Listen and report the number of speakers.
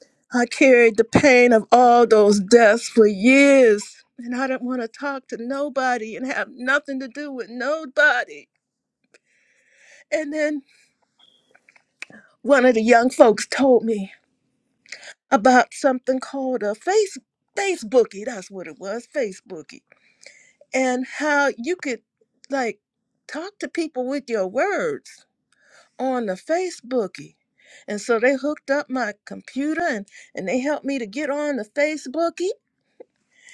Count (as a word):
one